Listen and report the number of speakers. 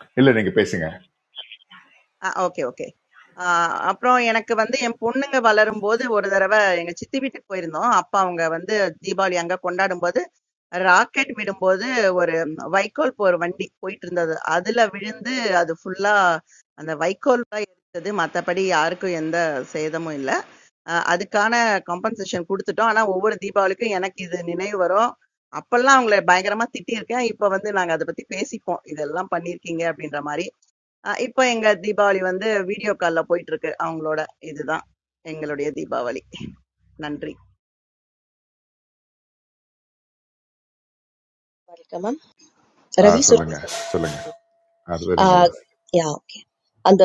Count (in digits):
3